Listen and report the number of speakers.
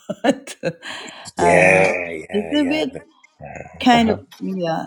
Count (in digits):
2